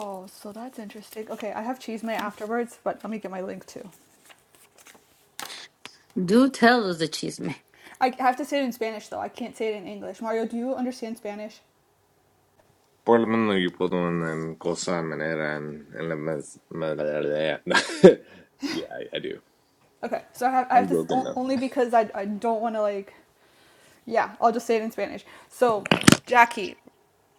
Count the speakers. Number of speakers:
3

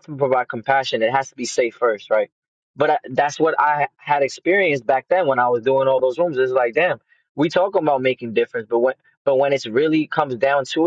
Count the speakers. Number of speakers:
1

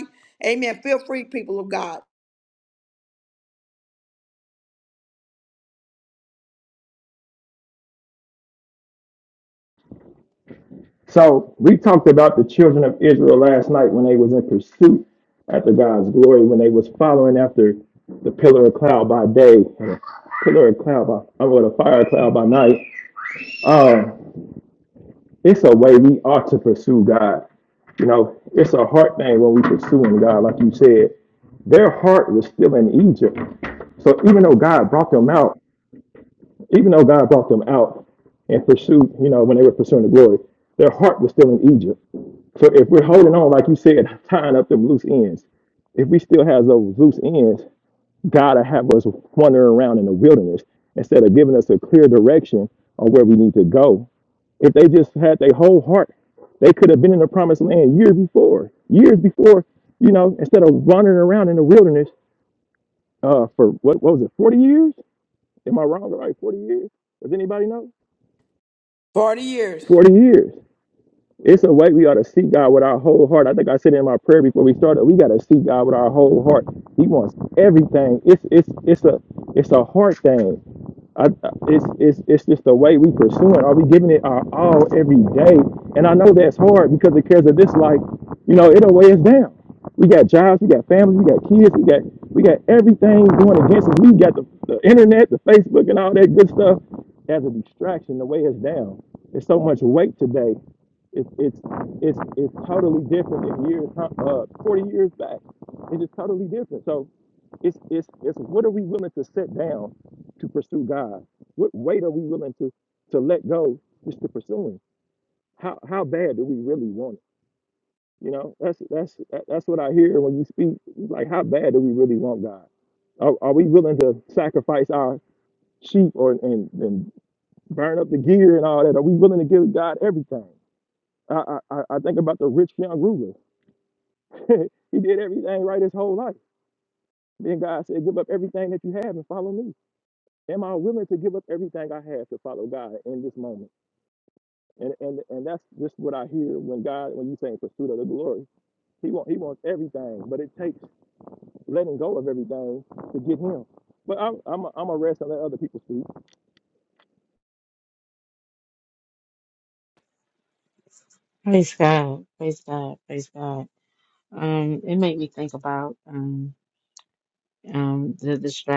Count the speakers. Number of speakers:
3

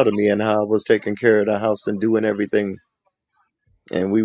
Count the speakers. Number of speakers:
1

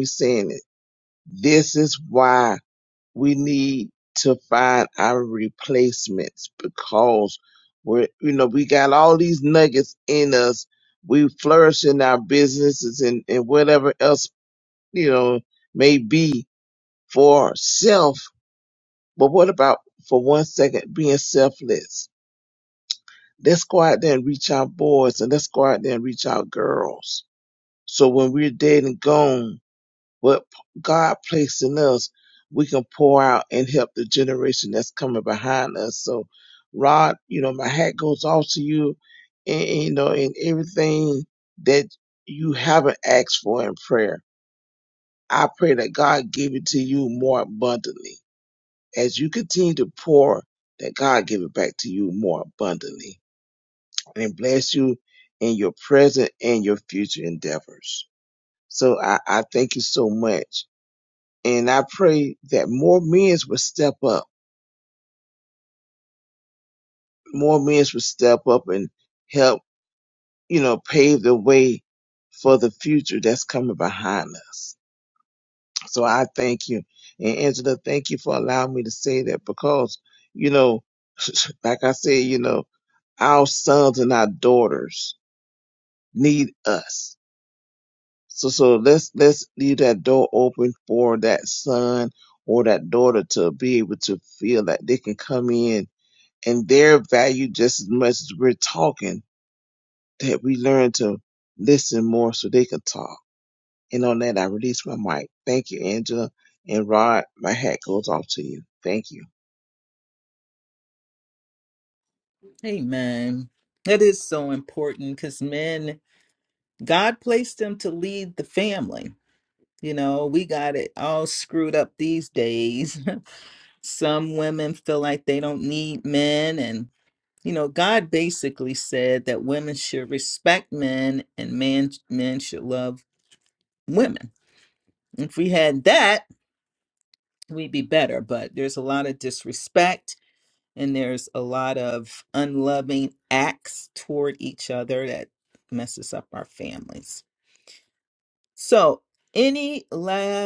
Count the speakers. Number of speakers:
2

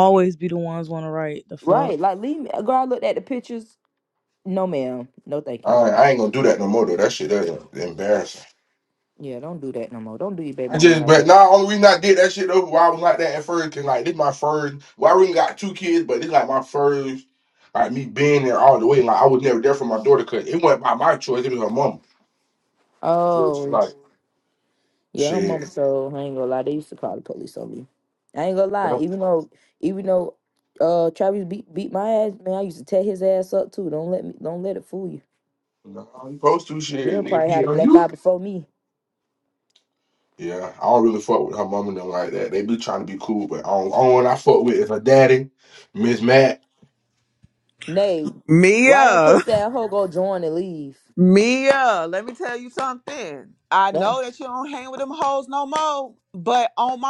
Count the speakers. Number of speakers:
4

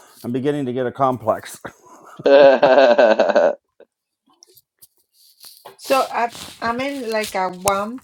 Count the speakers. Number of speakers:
3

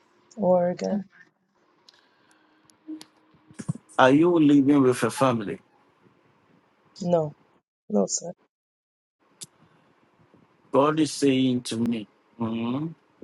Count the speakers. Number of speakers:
2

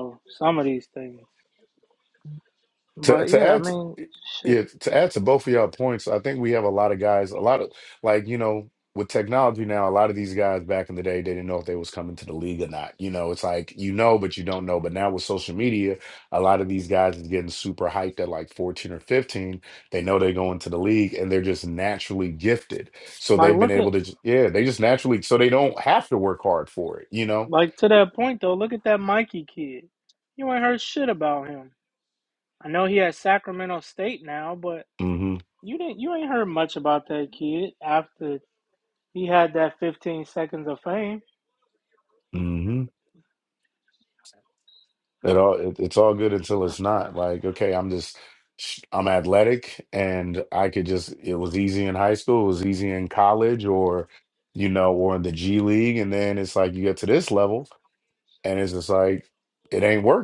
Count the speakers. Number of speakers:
2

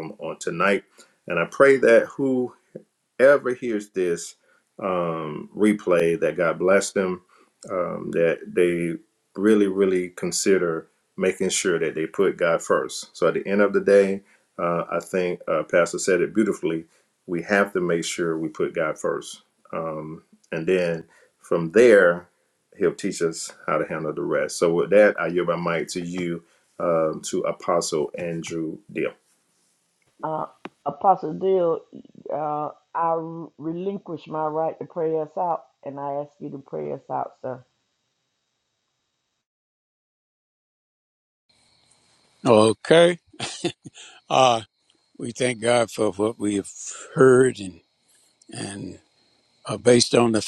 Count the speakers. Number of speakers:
3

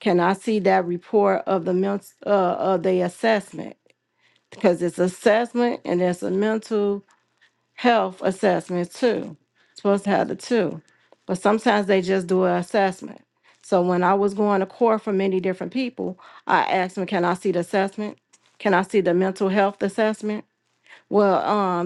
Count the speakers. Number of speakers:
1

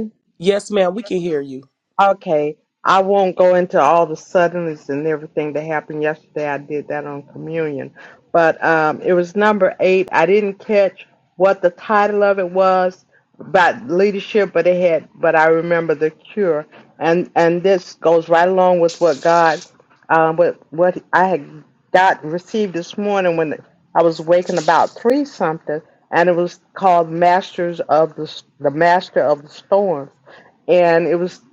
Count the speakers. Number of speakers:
2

